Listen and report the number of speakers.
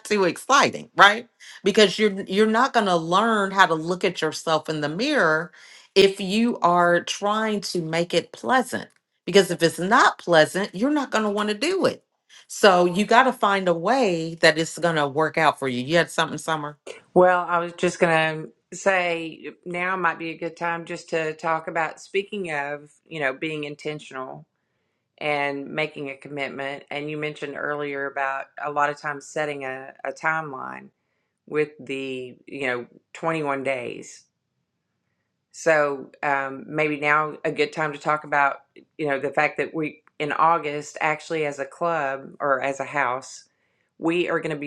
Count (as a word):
two